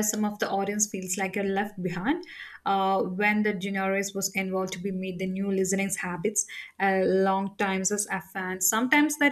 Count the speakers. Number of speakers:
one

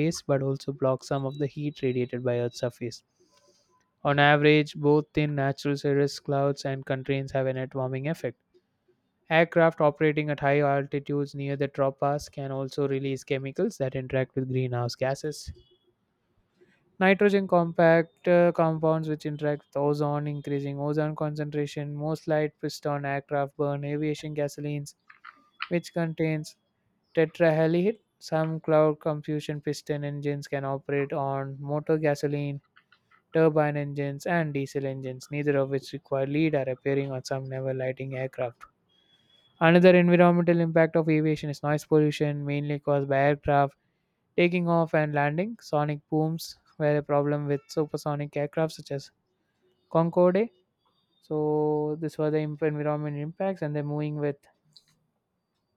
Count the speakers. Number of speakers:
one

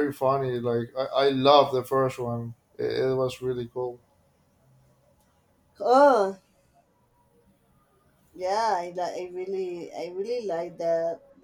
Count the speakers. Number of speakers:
two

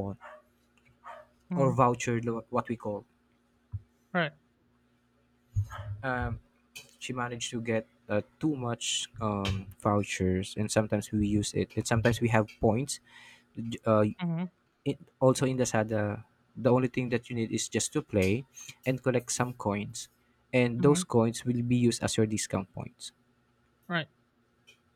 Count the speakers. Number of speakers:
two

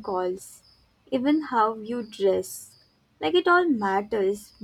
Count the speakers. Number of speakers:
one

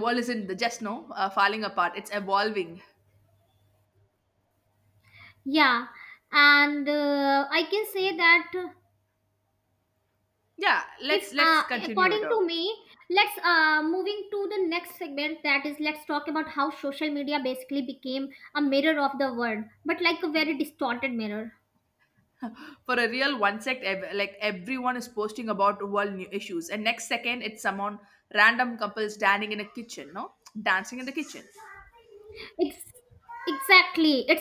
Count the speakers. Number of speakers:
two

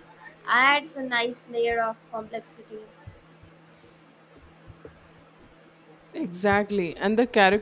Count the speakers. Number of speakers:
two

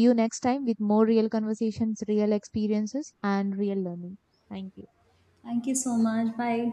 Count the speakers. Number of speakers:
two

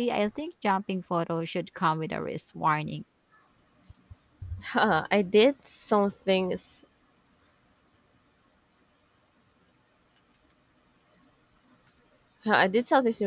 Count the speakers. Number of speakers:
two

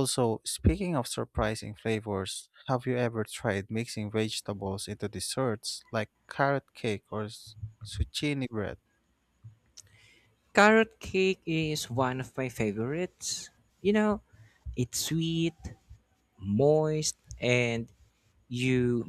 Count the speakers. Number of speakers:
two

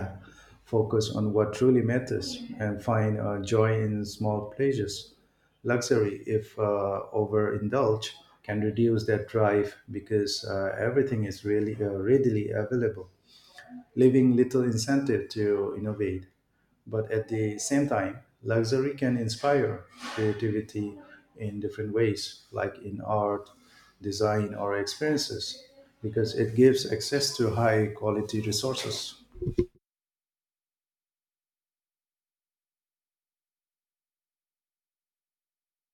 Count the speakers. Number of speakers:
one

